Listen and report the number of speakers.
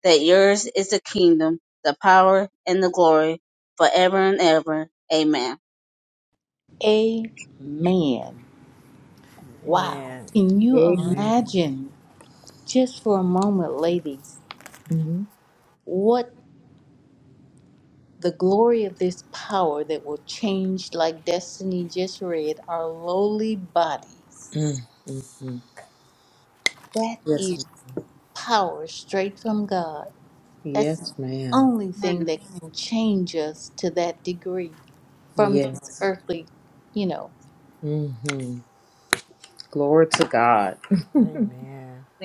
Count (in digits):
4